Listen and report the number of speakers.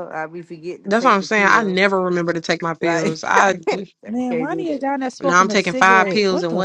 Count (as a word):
three